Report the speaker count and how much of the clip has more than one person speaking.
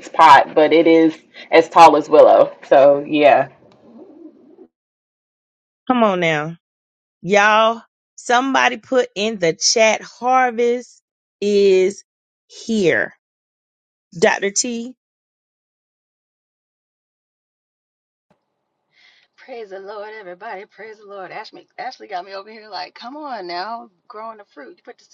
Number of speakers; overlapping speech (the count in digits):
3, no overlap